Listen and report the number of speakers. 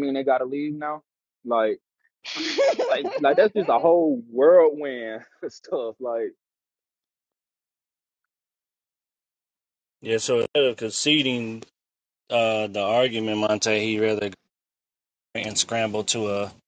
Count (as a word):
three